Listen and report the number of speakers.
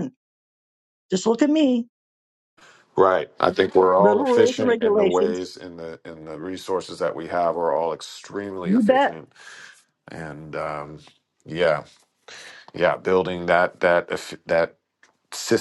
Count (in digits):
2